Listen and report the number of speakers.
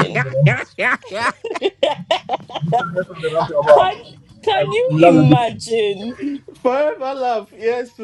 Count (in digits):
3